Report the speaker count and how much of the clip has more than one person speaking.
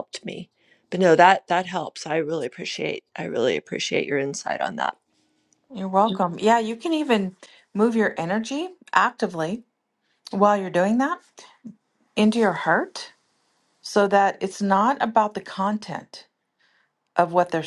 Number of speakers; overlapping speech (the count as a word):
two, no overlap